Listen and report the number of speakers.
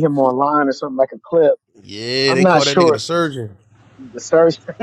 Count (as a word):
two